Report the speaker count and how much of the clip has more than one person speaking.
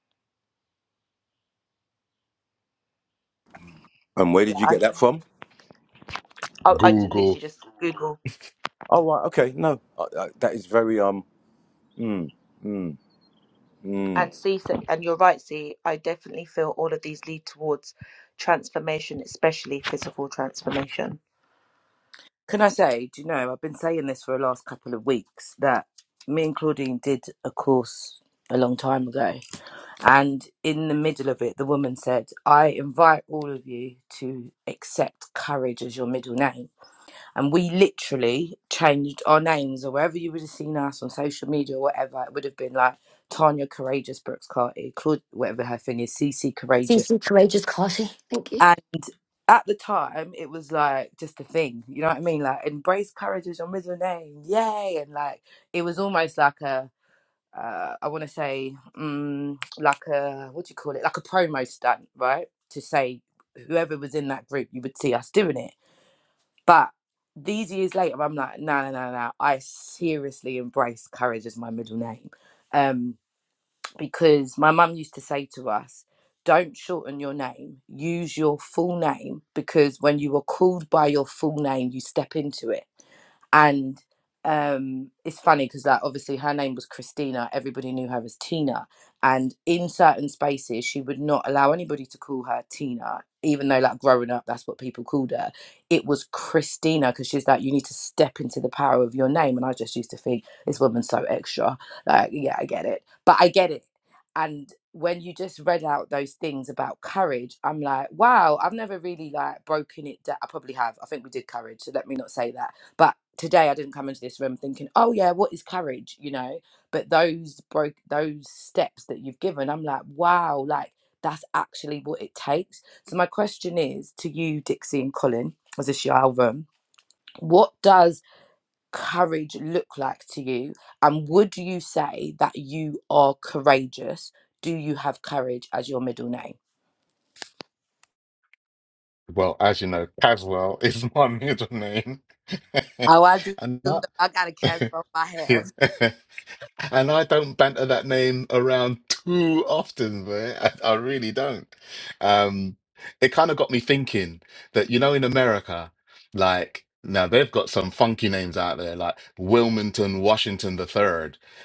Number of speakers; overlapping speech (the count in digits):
5, about 1%